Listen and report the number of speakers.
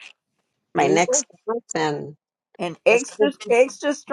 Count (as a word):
two